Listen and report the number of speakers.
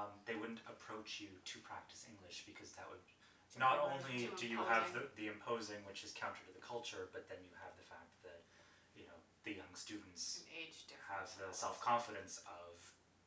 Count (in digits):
2